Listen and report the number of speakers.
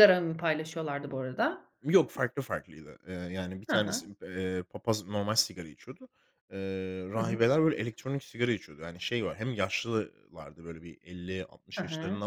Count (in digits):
2